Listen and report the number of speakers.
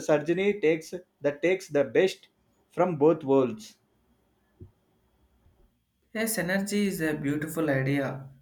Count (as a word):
two